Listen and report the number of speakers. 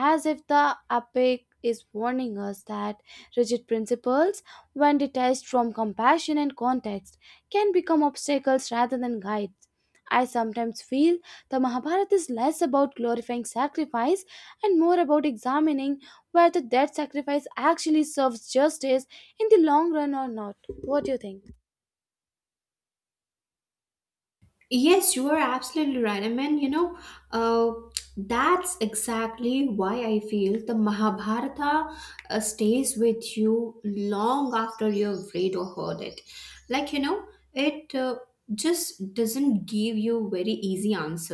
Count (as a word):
two